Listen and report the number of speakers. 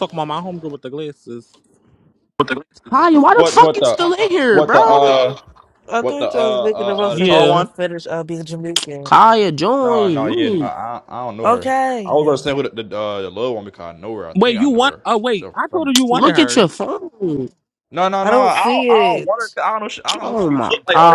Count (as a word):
four